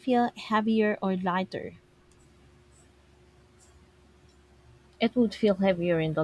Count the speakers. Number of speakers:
two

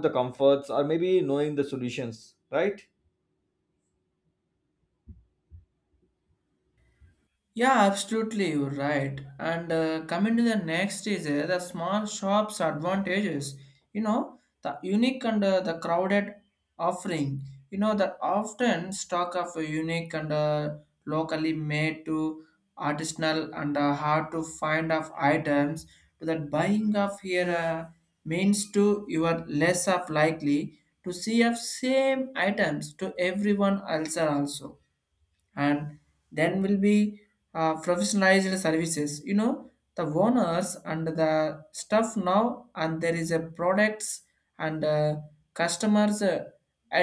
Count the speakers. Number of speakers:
two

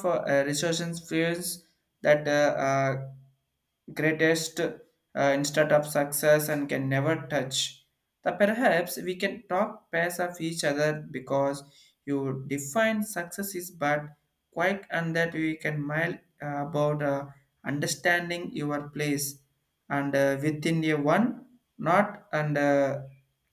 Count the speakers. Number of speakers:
one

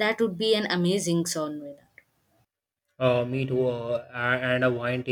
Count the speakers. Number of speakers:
two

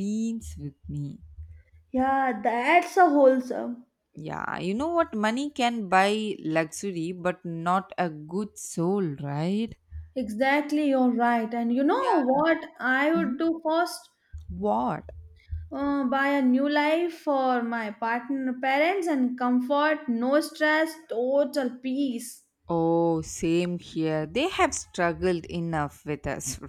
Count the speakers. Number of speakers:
two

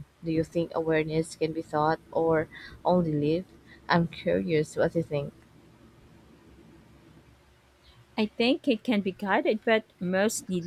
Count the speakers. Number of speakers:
two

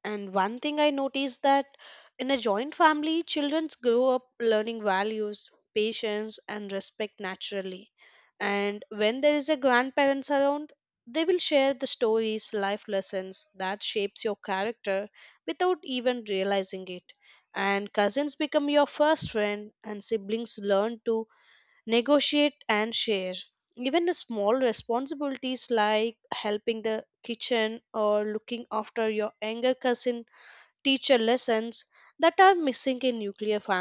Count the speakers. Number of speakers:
one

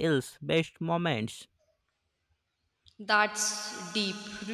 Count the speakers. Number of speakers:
two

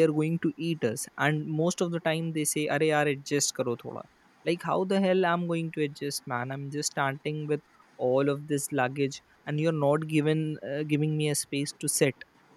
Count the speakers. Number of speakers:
one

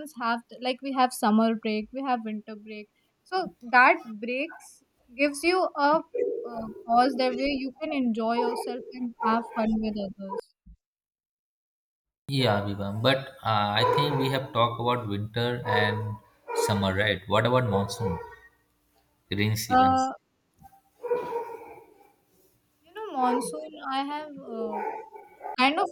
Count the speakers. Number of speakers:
two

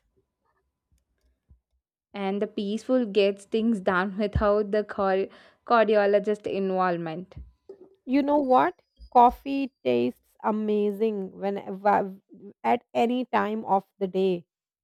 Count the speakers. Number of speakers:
two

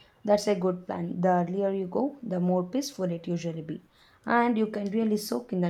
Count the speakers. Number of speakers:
one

